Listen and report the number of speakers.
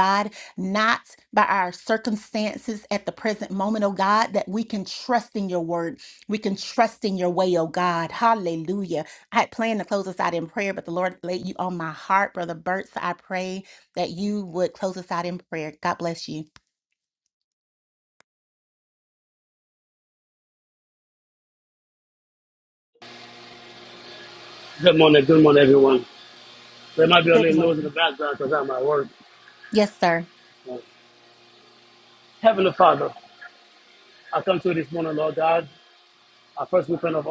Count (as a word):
two